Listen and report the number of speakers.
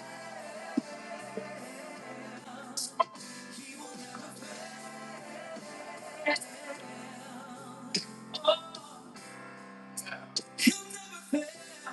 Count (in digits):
0